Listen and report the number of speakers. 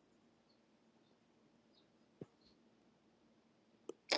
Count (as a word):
zero